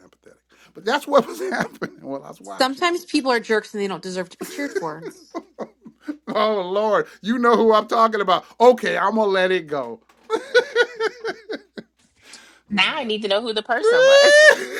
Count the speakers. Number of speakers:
3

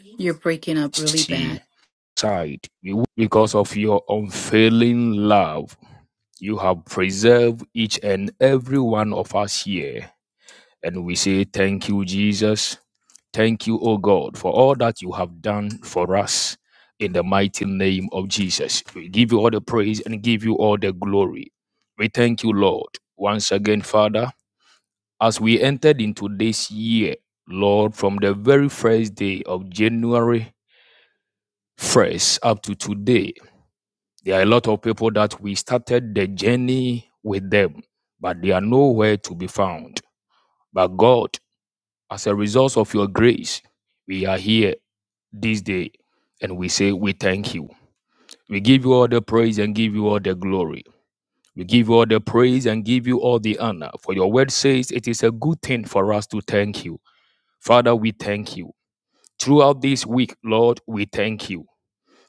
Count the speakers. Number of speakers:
2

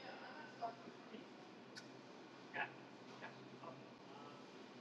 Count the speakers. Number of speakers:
0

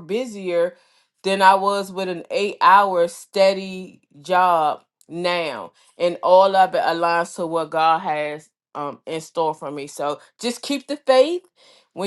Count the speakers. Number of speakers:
1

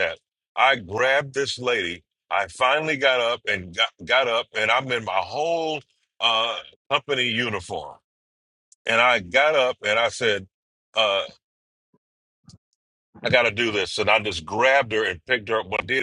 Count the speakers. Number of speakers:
1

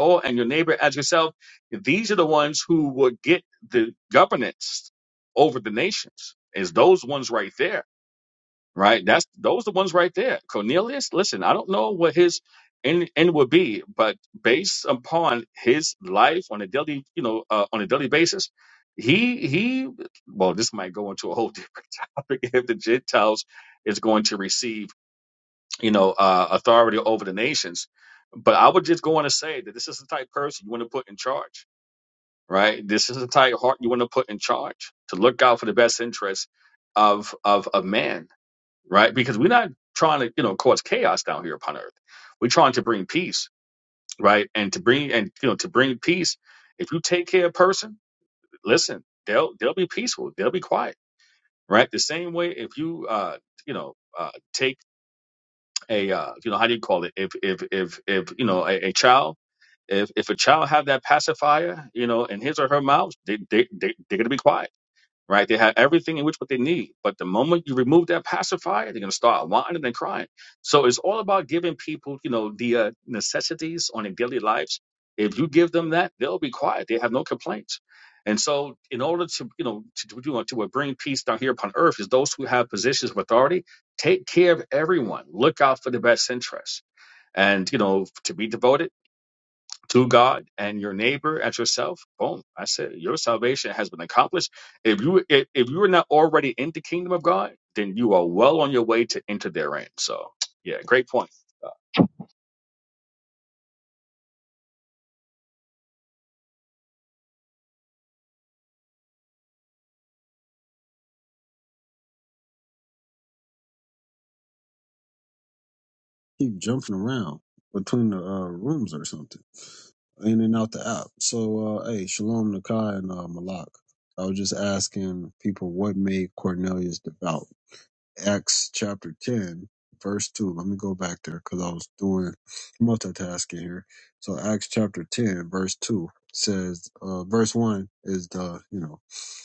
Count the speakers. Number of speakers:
2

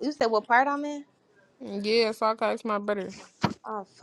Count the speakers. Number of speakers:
2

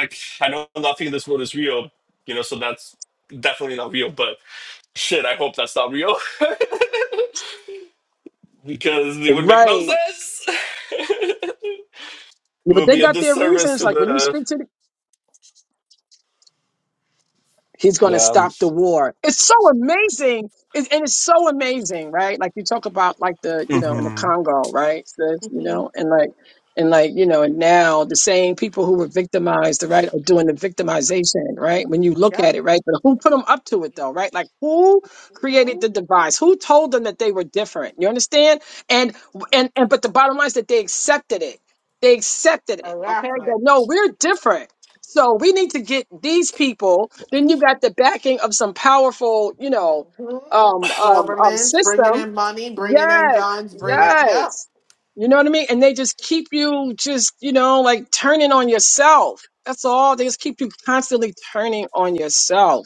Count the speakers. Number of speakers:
3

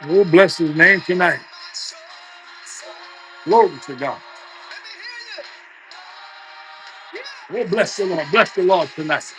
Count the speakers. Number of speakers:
1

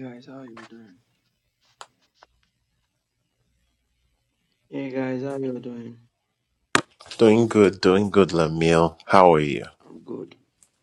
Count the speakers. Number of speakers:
2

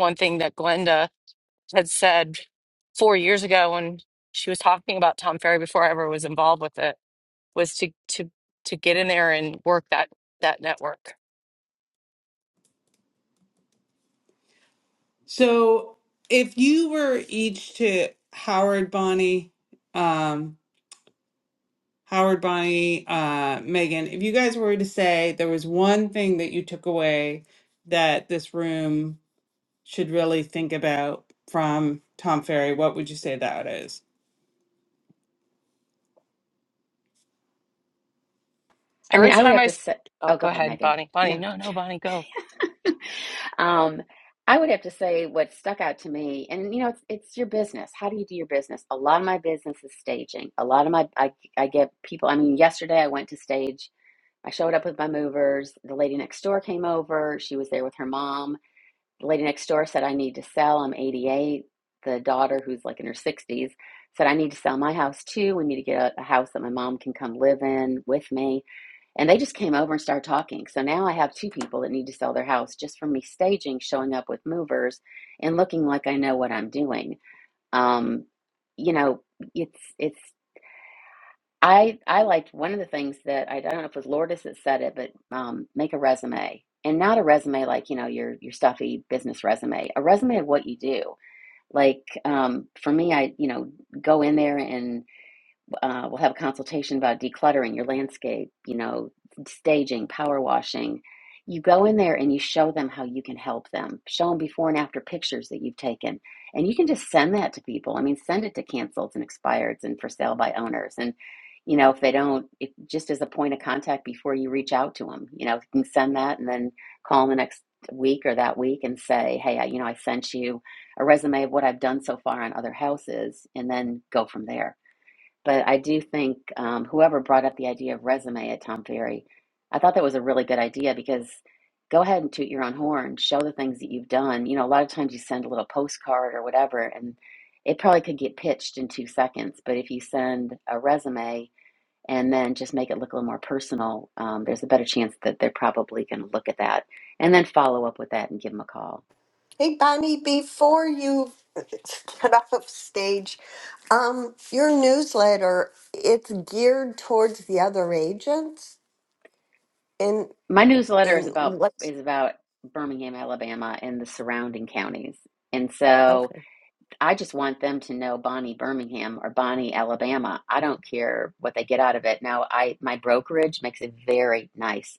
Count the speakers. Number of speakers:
4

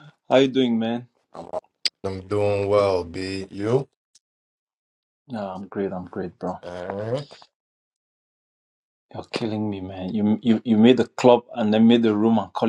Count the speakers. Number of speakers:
2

